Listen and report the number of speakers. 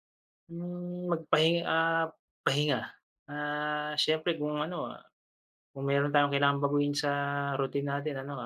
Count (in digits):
1